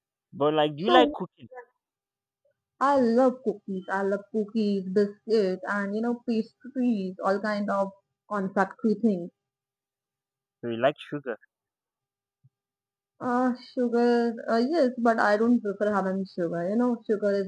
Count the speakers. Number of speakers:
2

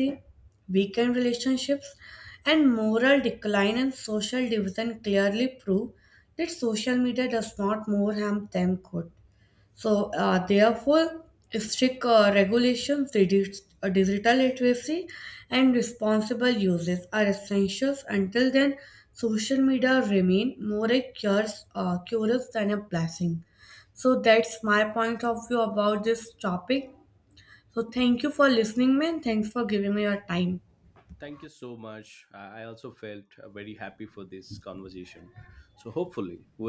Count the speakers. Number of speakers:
2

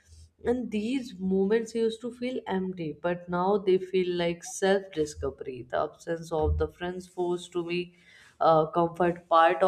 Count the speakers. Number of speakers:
1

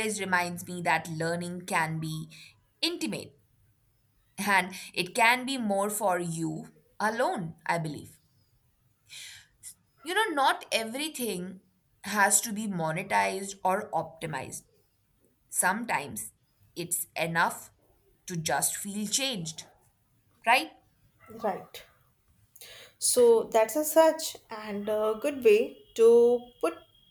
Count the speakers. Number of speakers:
2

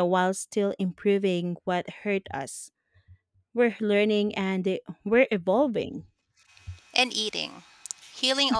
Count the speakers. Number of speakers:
2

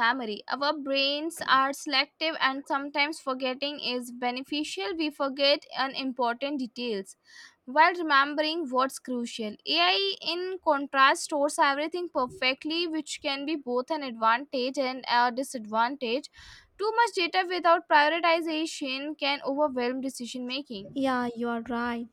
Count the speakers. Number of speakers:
2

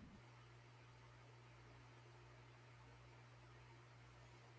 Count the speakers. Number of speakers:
0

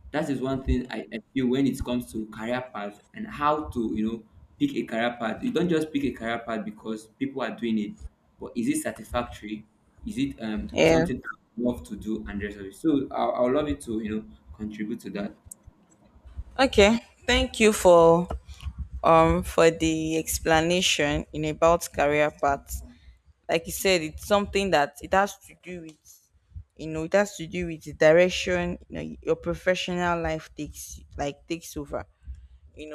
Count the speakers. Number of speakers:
2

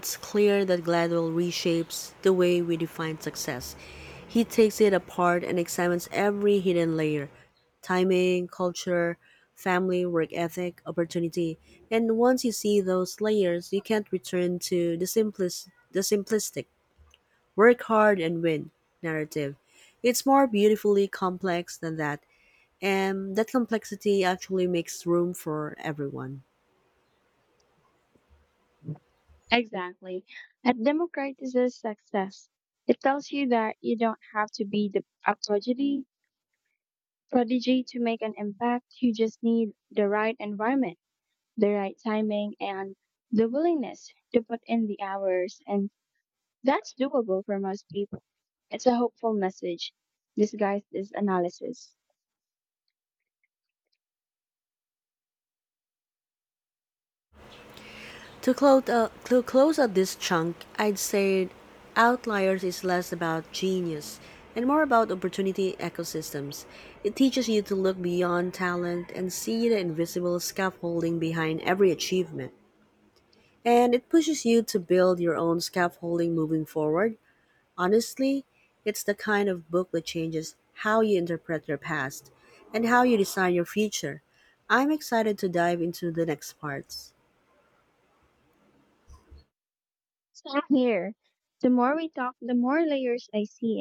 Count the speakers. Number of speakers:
2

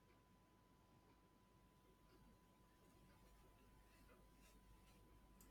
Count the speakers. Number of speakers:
0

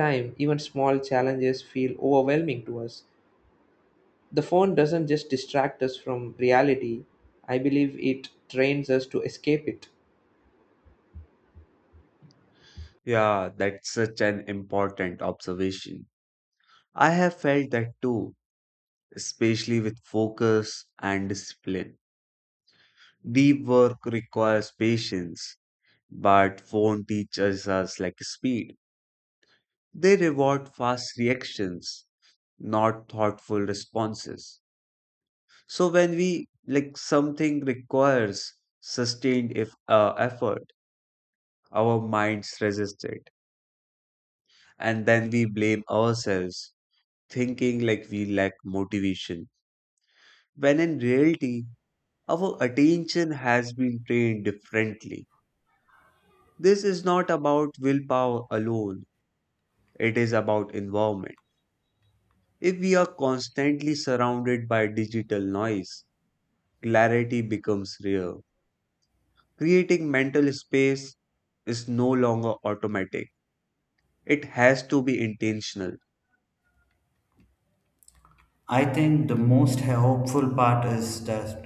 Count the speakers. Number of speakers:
3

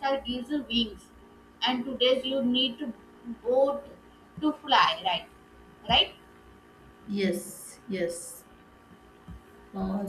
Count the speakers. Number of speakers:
2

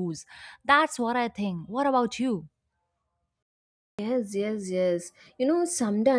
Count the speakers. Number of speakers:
2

